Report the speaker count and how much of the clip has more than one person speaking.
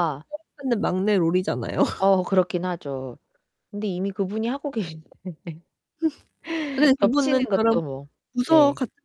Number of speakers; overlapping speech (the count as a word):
two, about 12%